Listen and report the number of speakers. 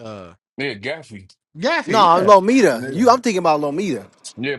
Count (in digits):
3